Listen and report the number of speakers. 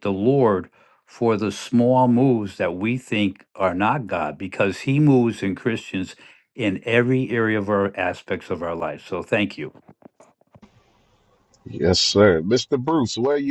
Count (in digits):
2